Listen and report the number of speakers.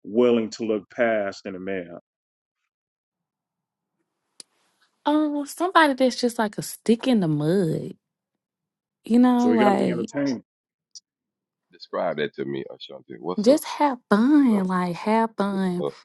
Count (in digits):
3